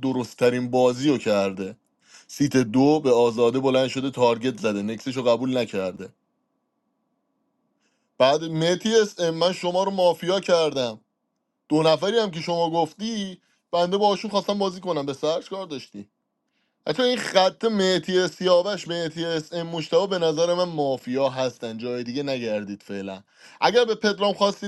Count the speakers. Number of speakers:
1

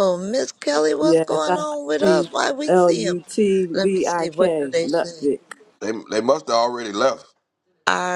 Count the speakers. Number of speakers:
3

